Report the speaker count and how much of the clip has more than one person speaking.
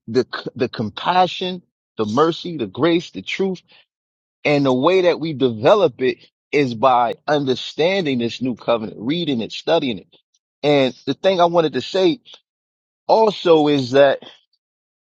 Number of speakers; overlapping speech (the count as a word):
one, no overlap